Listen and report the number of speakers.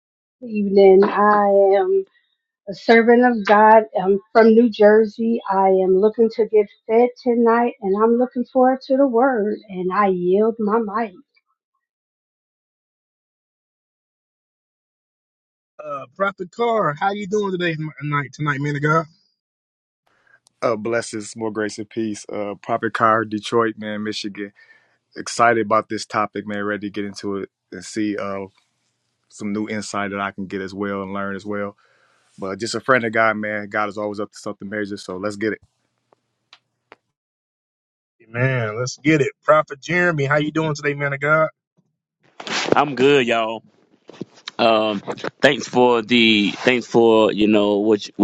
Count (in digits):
4